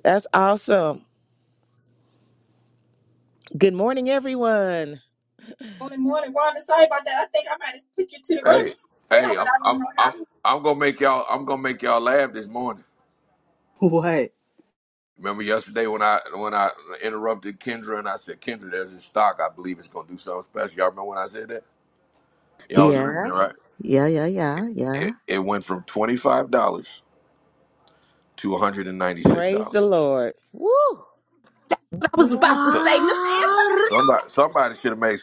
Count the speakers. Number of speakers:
5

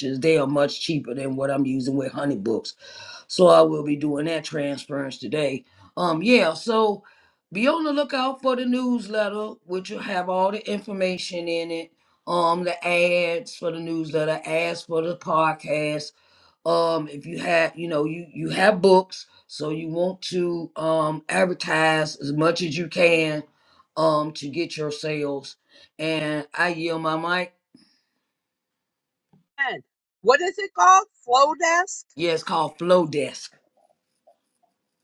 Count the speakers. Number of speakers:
2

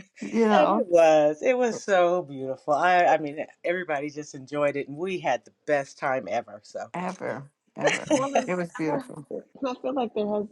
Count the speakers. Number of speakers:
3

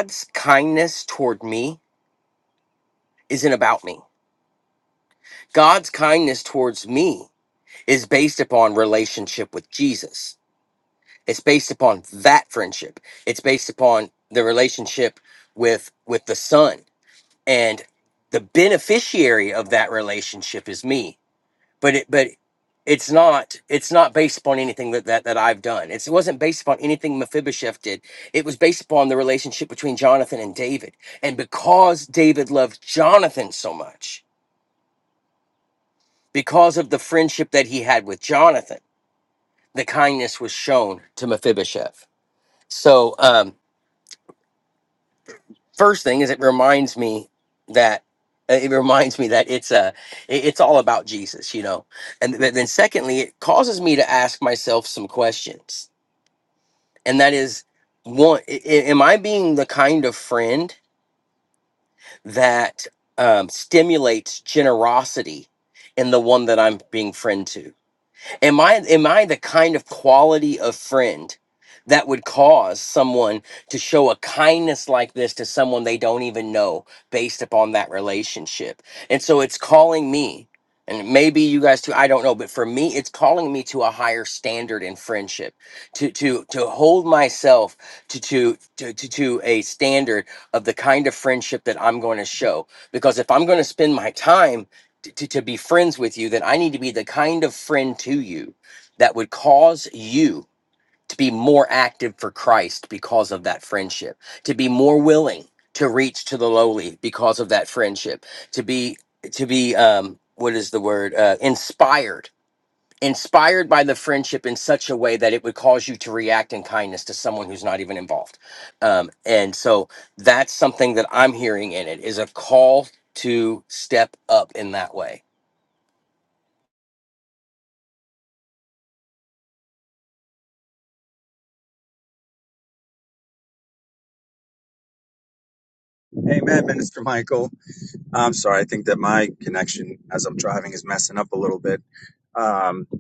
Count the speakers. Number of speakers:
2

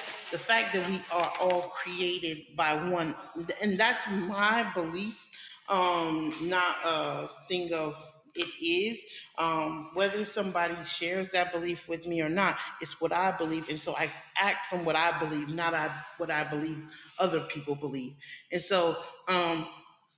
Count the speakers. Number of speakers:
1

